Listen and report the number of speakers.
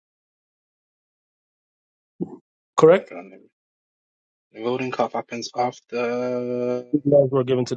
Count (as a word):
two